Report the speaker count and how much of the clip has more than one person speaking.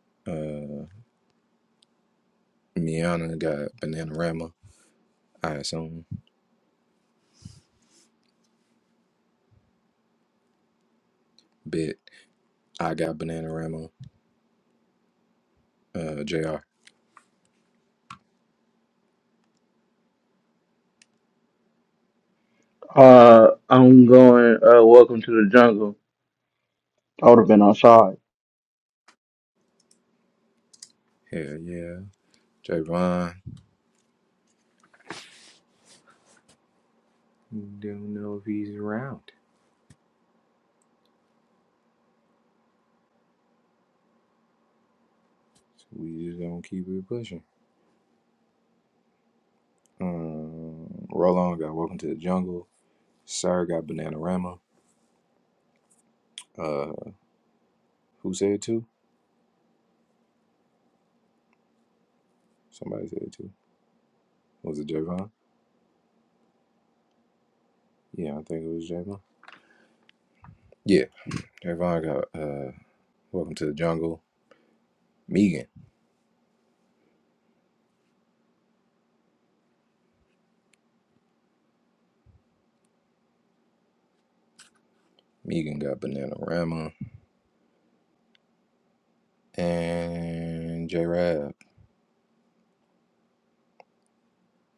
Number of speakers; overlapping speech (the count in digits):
2, no overlap